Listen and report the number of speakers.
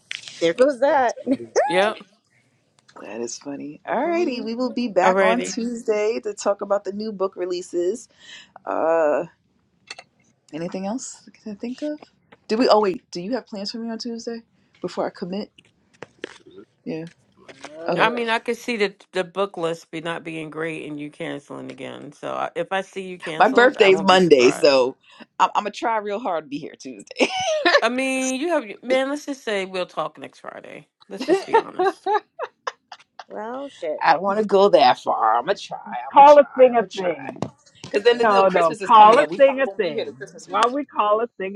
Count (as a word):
four